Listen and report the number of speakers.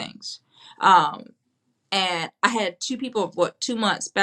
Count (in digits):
1